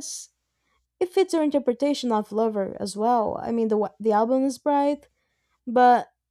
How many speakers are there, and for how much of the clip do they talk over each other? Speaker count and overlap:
one, no overlap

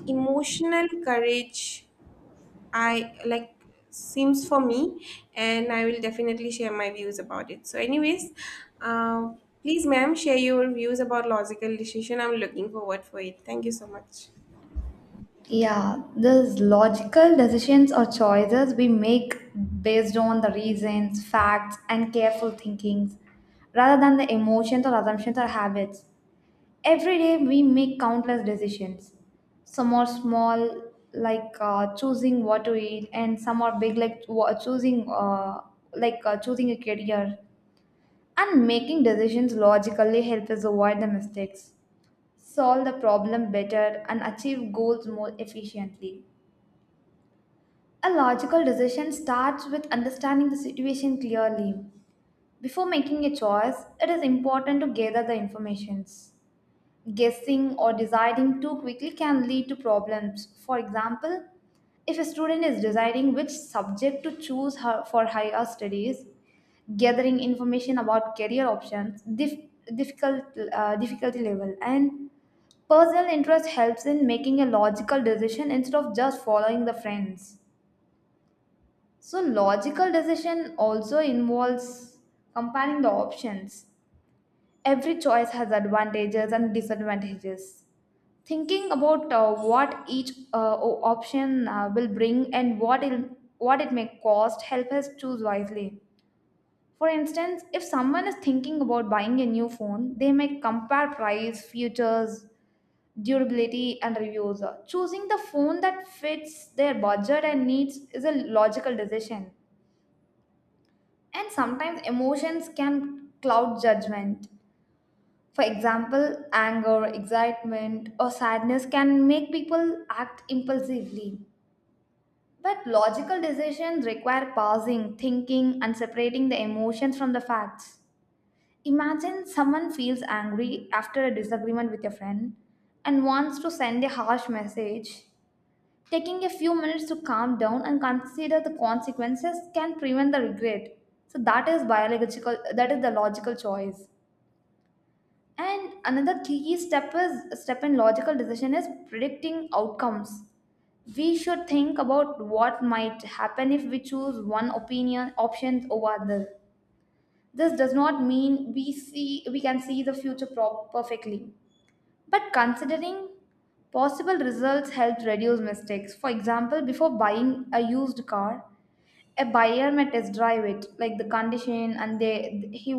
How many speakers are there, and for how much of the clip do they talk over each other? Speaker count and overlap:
two, no overlap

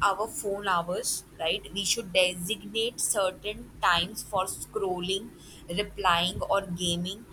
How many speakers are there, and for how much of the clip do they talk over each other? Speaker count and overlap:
one, no overlap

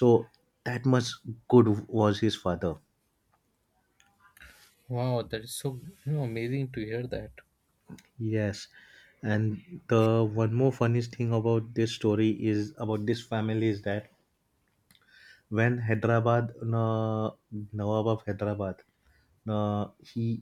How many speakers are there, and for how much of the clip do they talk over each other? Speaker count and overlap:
two, no overlap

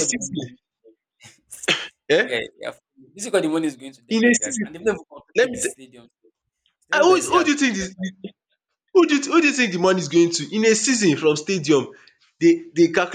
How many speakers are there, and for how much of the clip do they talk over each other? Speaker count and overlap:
two, about 19%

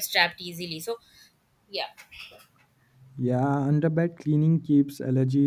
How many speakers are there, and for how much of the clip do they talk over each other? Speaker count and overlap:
two, no overlap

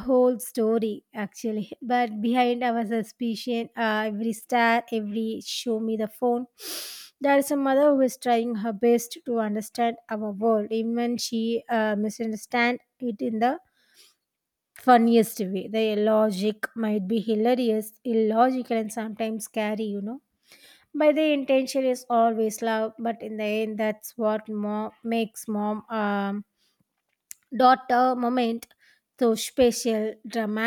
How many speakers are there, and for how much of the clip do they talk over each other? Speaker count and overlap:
one, no overlap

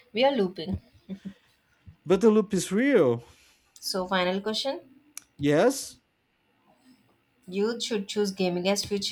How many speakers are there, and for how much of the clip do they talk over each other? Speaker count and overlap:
two, no overlap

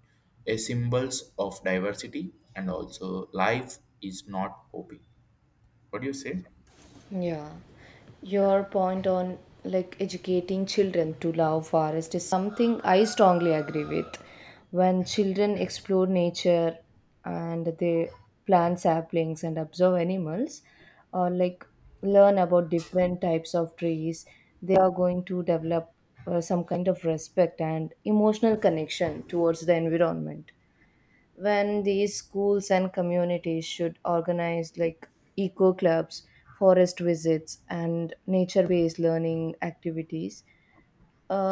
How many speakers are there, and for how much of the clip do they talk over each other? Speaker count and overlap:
two, no overlap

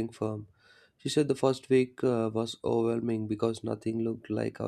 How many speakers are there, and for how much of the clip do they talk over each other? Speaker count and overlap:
one, no overlap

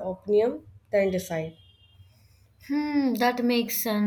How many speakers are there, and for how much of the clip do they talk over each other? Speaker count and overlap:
two, no overlap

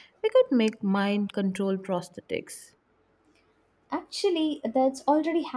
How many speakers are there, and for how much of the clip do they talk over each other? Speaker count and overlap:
two, no overlap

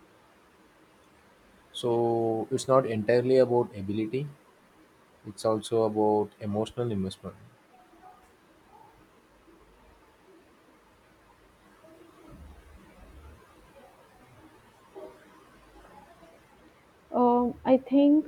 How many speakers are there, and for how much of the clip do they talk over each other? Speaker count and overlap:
two, no overlap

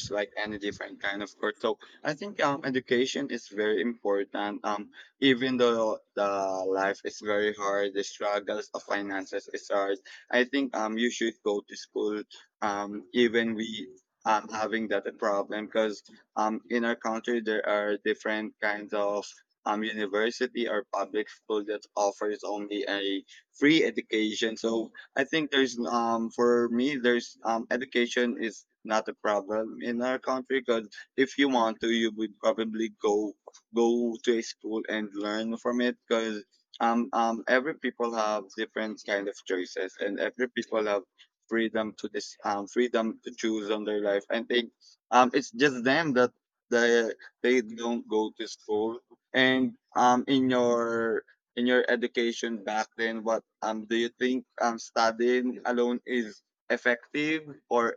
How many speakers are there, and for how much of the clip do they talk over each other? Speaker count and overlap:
one, no overlap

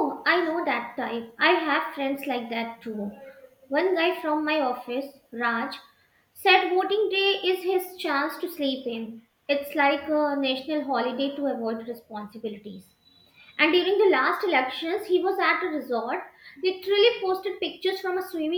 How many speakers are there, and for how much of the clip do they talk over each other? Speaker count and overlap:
one, no overlap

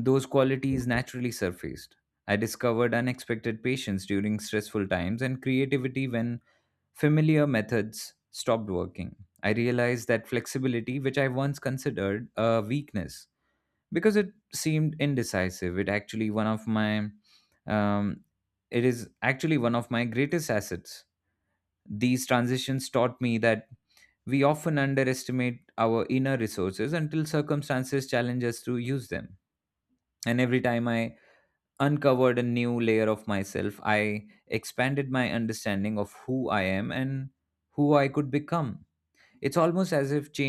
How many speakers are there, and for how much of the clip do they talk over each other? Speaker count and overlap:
one, no overlap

